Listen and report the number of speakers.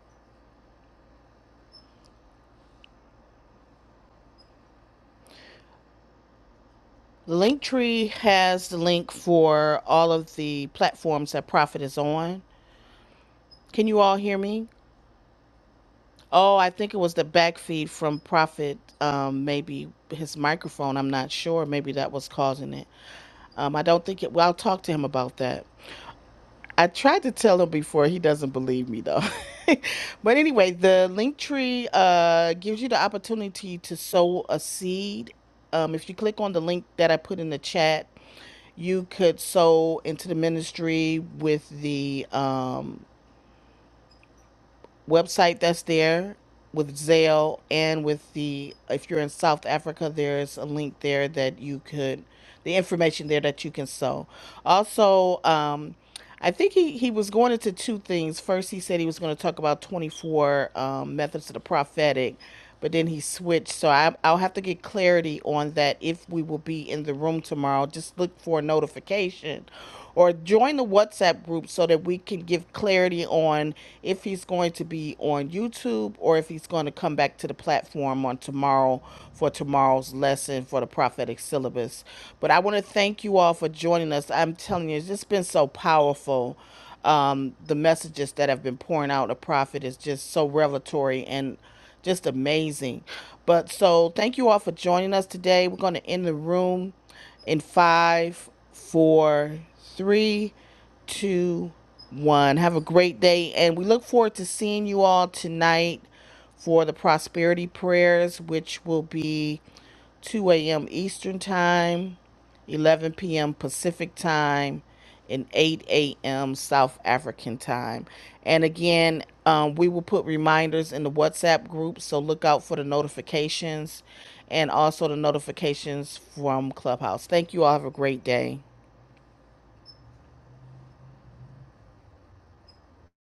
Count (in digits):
1